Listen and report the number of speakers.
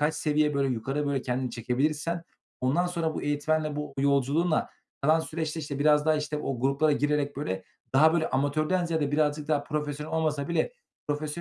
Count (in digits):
1